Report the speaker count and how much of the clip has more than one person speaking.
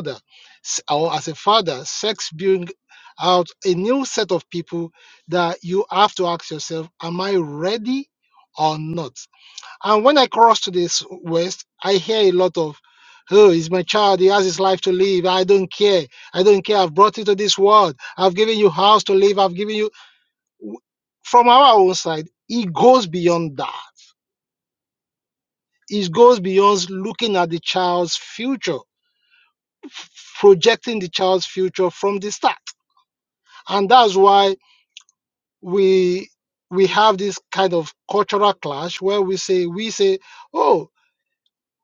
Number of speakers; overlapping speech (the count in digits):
1, no overlap